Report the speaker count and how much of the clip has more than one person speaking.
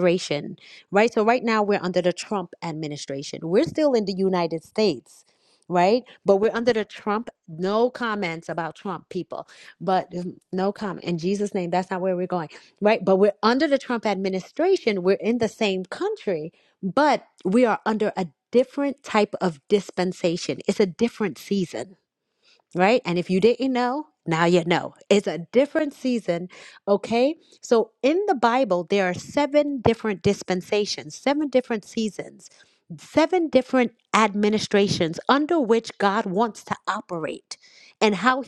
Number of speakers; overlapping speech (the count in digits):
1, no overlap